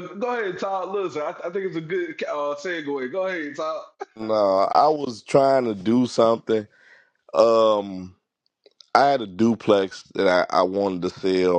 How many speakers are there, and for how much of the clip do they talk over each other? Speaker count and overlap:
2, no overlap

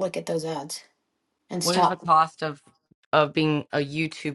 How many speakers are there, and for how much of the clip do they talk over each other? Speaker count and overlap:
2, about 10%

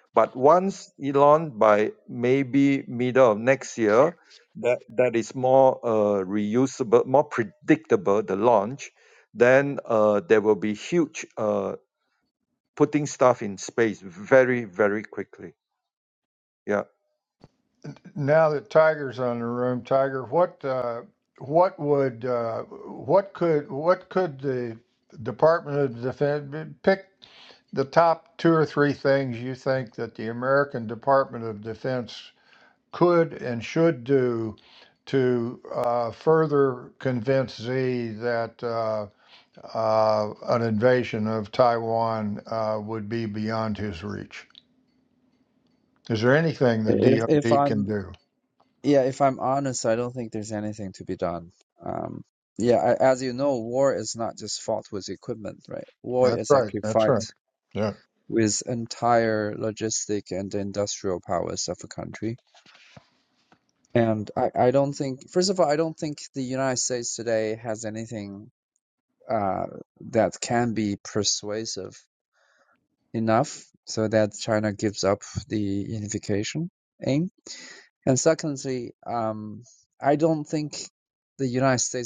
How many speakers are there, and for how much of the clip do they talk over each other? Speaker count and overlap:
3, about 2%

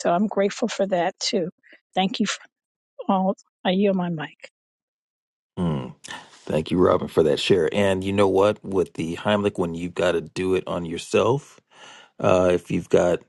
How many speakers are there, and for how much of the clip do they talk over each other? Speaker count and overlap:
2, no overlap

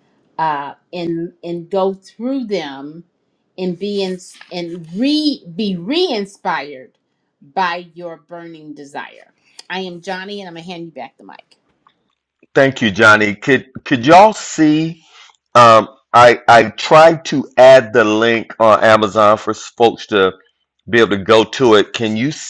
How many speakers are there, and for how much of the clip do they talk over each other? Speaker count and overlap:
2, no overlap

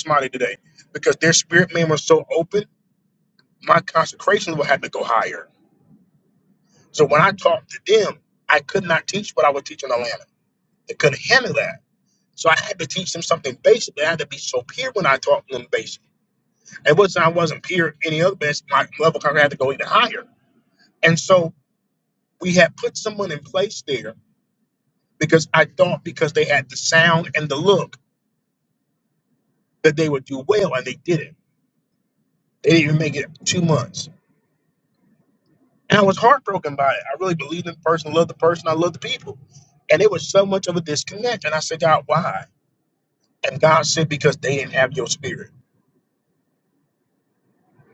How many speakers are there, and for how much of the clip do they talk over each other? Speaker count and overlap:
1, no overlap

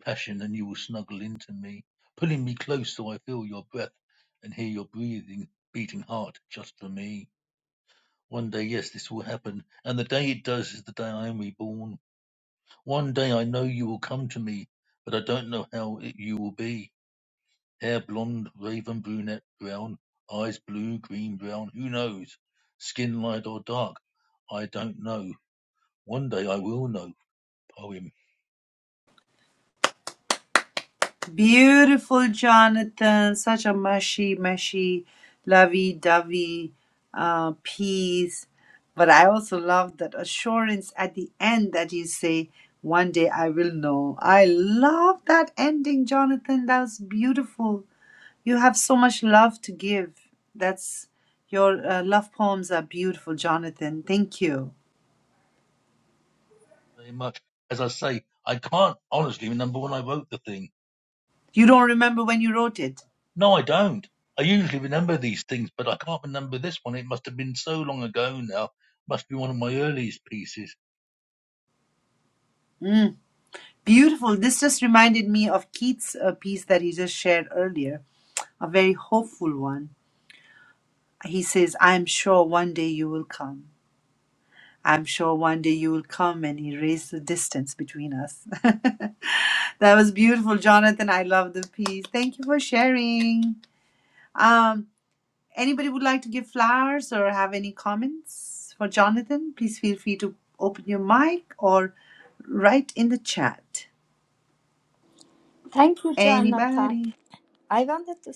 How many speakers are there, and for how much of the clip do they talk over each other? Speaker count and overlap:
3, about 1%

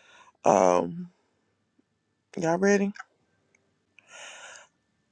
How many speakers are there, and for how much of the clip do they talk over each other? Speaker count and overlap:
1, no overlap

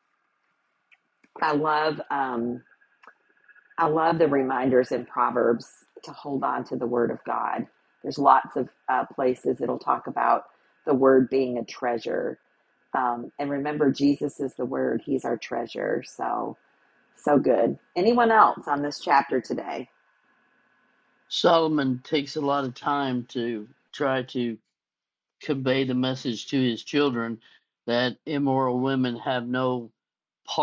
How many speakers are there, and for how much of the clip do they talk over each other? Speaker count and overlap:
2, no overlap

